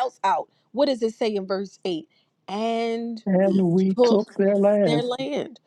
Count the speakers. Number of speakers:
two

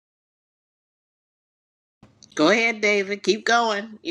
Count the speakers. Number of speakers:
one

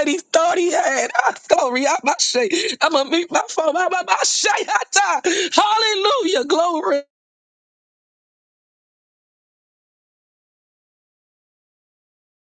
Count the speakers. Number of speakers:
one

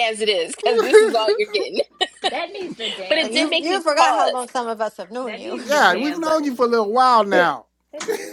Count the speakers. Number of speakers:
four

